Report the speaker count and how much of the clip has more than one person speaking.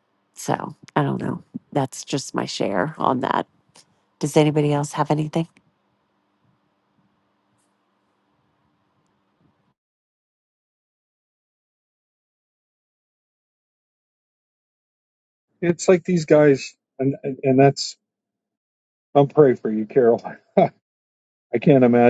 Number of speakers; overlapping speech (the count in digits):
2, no overlap